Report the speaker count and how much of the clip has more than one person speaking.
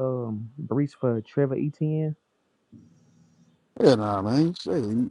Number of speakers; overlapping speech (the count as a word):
two, no overlap